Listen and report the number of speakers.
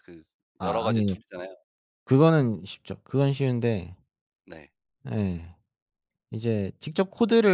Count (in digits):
2